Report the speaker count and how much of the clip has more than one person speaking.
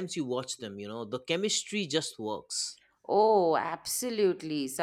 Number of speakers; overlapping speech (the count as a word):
two, no overlap